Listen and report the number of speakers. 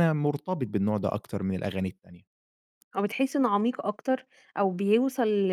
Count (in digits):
2